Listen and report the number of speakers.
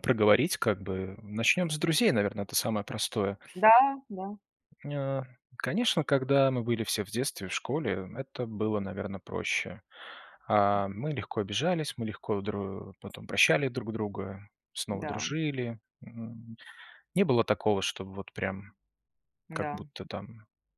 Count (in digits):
2